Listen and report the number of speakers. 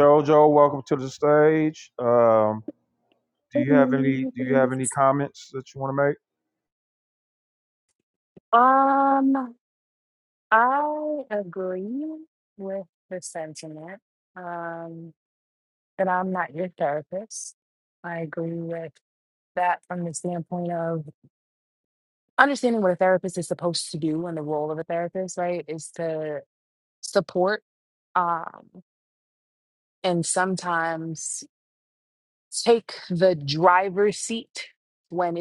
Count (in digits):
2